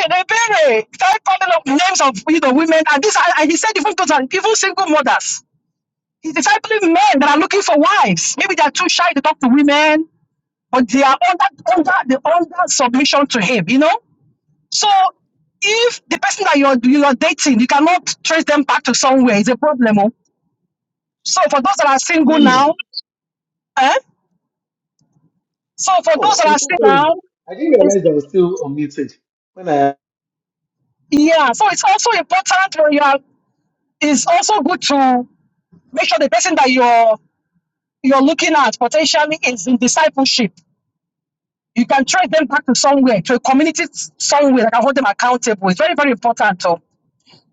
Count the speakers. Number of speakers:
2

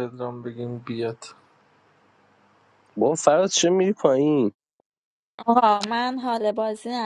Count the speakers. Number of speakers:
3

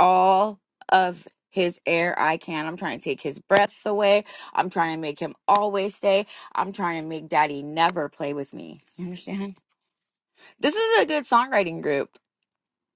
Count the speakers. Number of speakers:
1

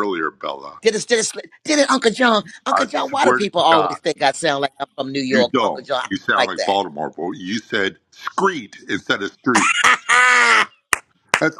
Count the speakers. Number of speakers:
2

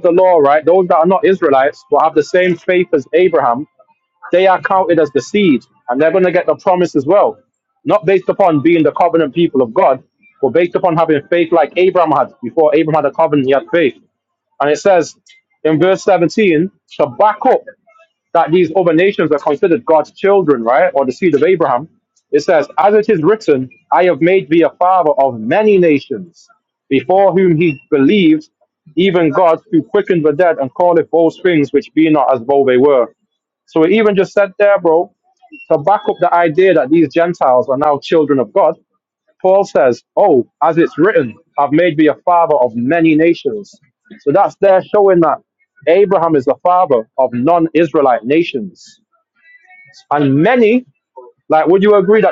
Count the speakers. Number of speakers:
1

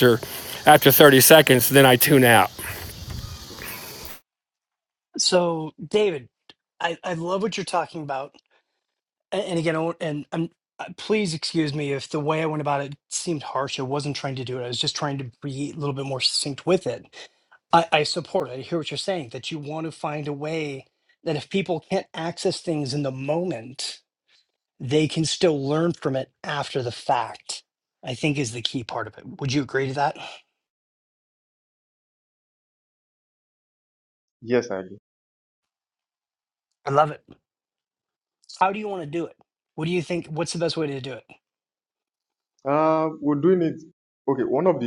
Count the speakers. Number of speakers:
3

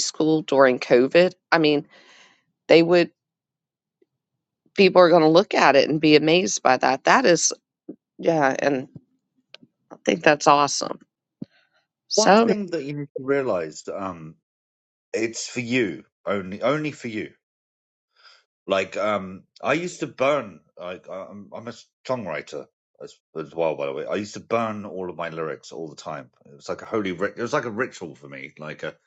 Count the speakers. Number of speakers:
2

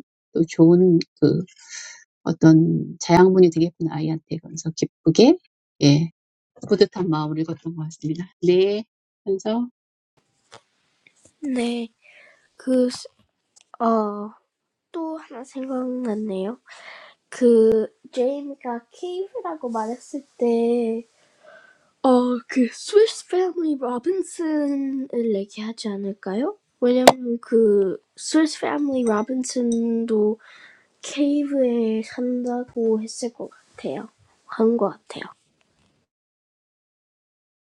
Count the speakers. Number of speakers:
2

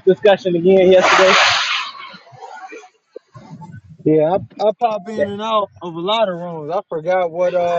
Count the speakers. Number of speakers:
2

